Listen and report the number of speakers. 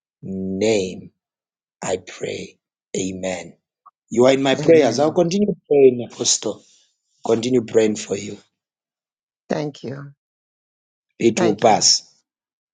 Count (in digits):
2